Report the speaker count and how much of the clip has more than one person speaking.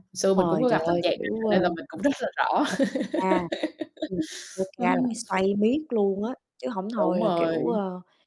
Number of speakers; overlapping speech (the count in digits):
2, about 30%